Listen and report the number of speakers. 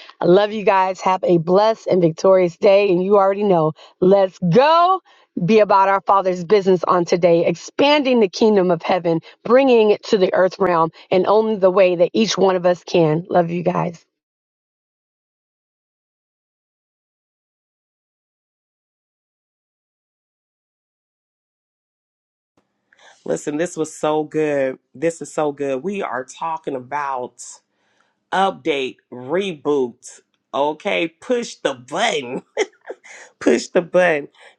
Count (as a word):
two